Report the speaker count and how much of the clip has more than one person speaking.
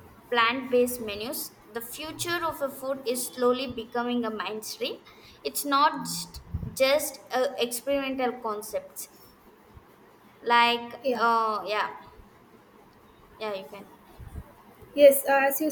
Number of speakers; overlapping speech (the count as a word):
two, about 1%